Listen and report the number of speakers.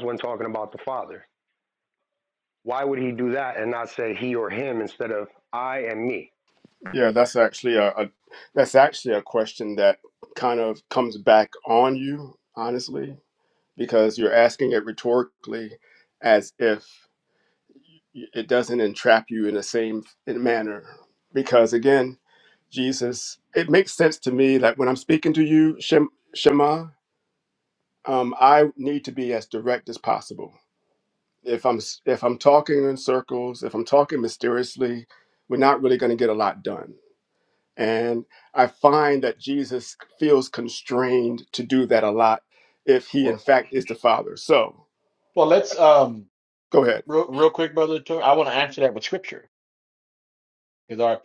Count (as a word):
three